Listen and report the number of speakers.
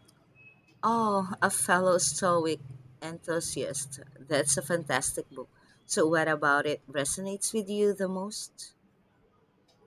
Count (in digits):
1